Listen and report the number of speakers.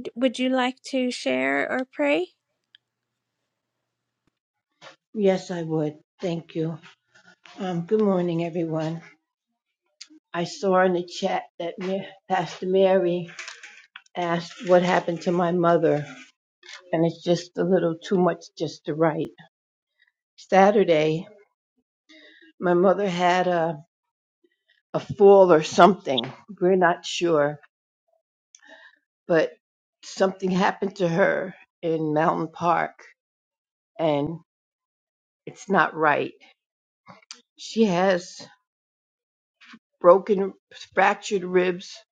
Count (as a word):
two